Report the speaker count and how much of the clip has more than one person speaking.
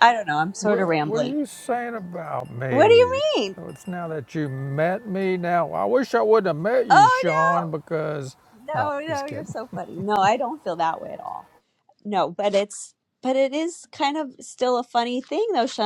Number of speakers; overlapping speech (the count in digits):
2, about 20%